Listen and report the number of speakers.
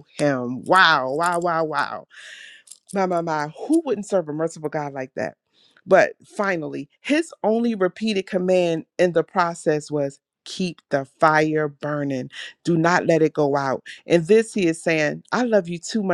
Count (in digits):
1